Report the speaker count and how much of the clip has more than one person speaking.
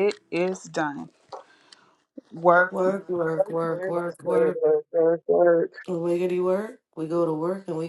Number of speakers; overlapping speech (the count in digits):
3, about 13%